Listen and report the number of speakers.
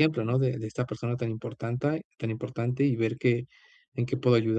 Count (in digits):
1